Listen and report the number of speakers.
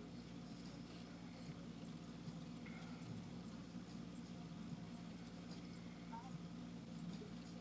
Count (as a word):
zero